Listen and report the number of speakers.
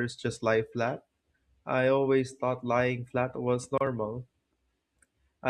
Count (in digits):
1